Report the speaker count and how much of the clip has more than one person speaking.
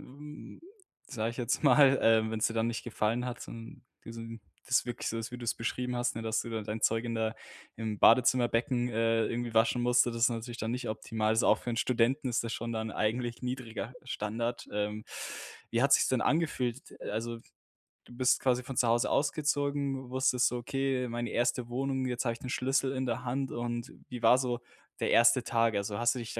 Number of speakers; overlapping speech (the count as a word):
one, no overlap